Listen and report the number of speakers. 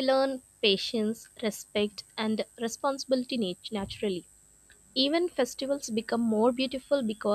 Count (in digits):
1